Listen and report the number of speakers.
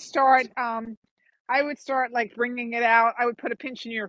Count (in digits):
1